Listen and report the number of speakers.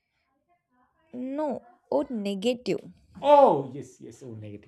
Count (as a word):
two